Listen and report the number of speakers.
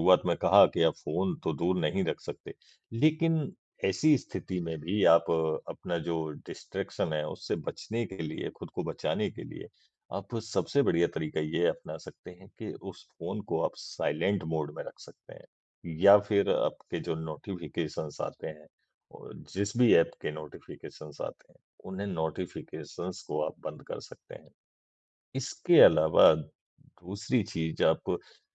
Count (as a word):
one